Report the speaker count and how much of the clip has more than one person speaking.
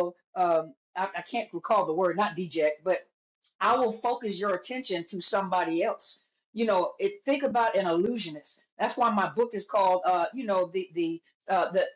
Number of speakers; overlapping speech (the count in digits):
1, no overlap